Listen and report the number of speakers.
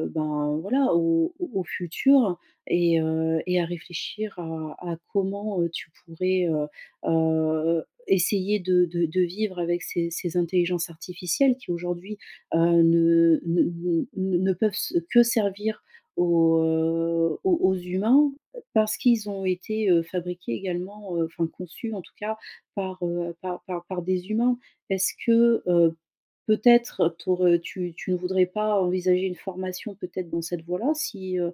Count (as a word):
one